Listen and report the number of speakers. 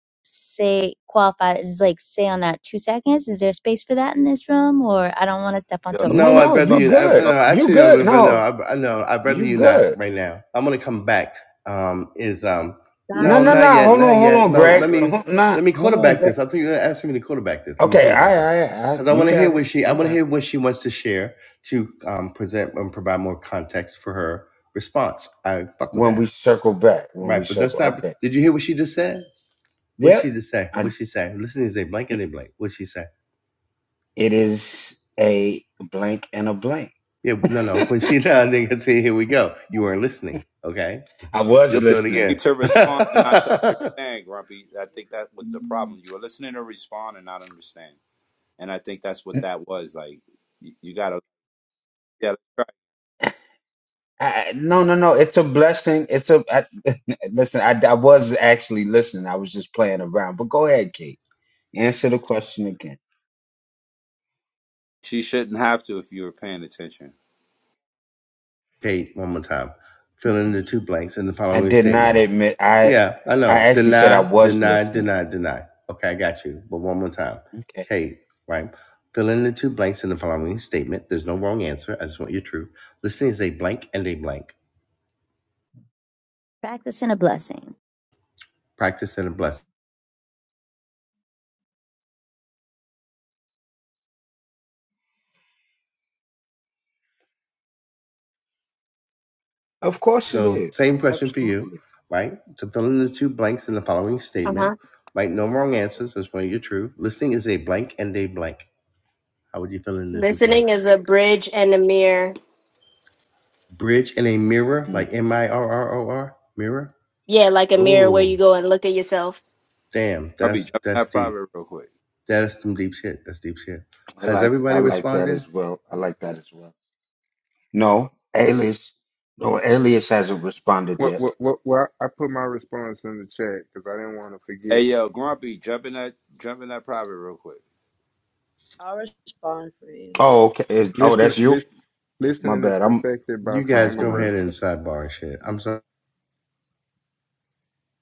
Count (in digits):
7